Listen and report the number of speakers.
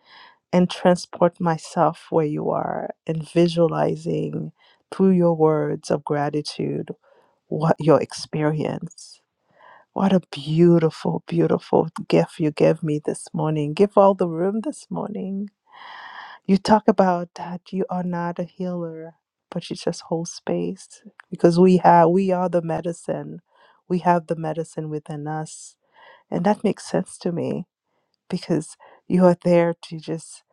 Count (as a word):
one